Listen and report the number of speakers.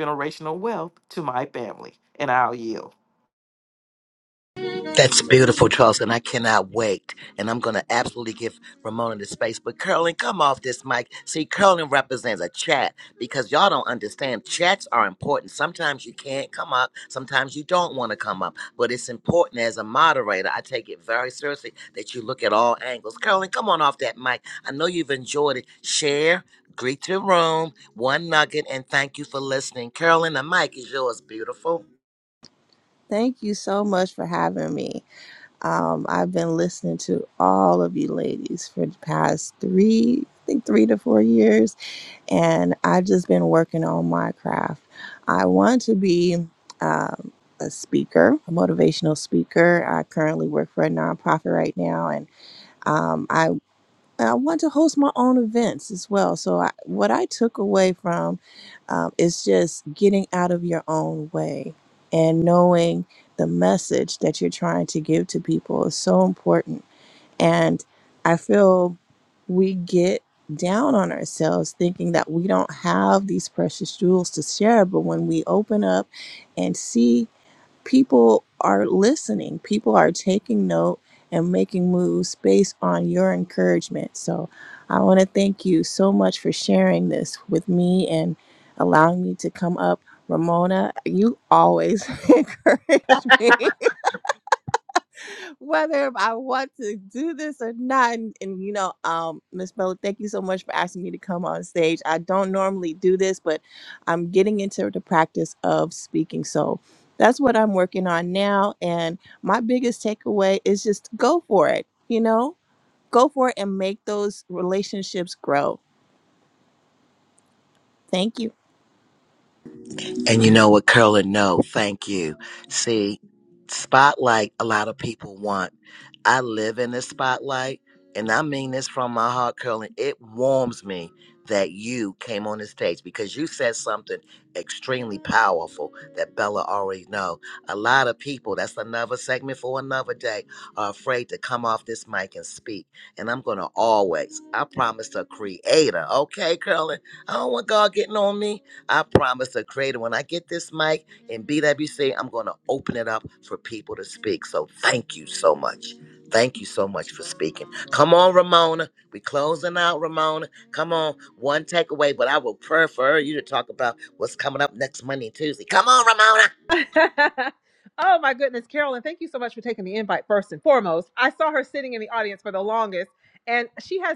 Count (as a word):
four